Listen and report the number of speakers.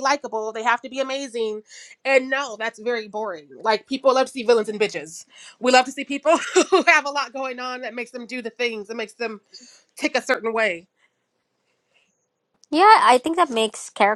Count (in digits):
2